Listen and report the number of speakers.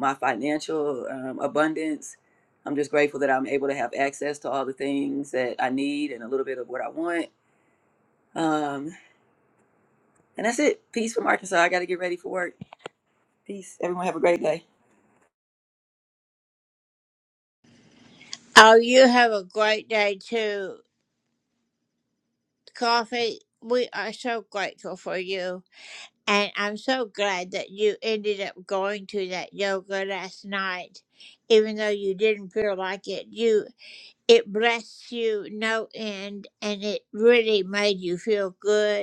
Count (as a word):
two